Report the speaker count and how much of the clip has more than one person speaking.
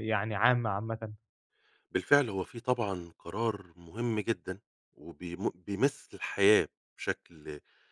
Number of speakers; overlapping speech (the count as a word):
two, no overlap